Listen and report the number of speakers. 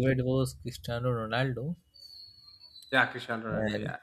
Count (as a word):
two